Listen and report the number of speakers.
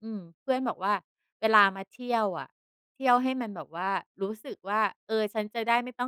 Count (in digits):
1